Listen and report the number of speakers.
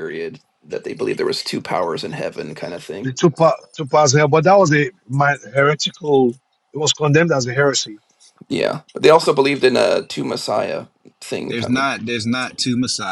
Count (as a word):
three